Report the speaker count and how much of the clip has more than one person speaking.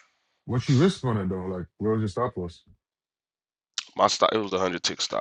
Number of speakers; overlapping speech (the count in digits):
2, no overlap